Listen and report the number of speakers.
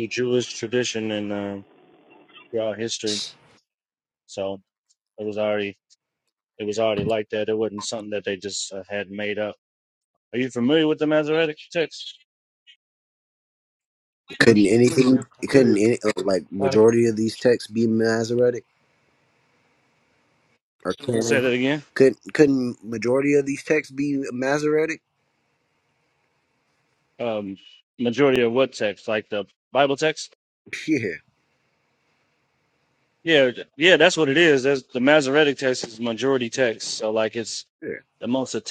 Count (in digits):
2